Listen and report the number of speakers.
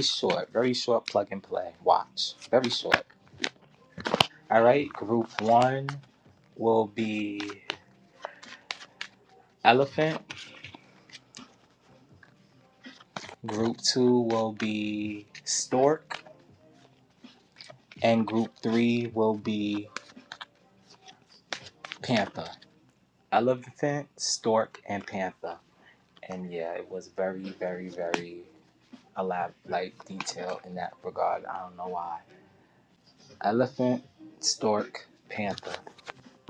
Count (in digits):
1